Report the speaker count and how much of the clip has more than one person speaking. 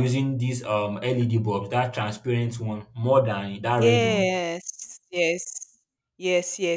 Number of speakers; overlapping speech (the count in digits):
2, about 8%